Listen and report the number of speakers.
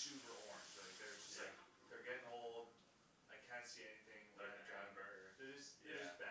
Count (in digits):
2